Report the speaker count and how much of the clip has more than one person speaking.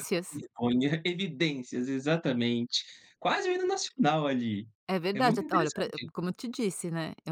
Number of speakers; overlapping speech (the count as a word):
two, about 13%